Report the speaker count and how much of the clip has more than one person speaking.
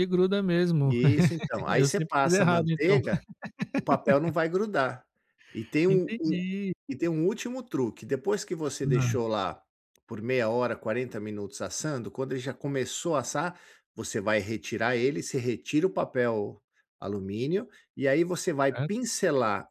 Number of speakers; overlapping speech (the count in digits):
2, about 13%